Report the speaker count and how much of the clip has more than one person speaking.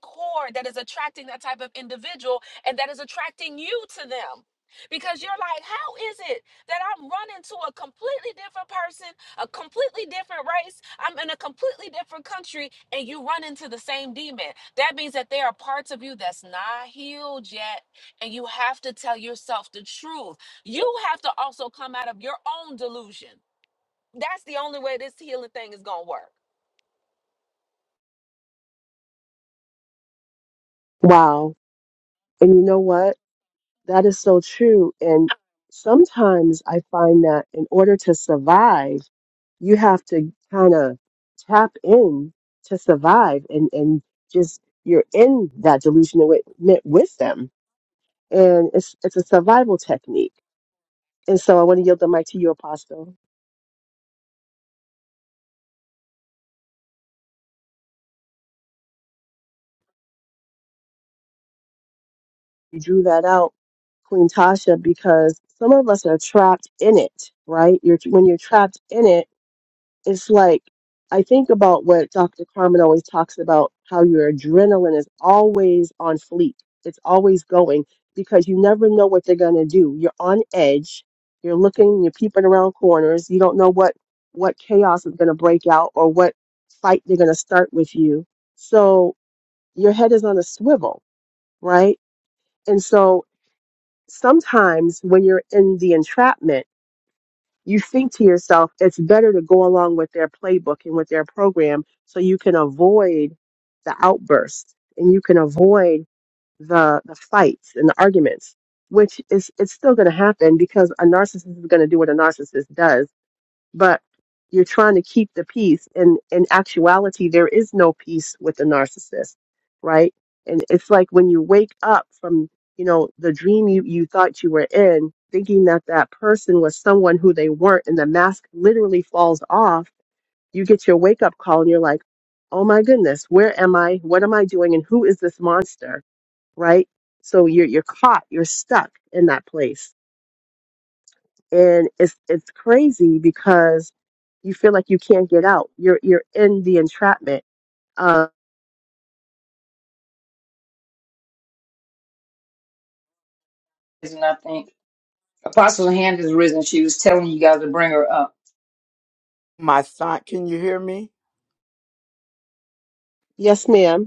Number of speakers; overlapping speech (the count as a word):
four, no overlap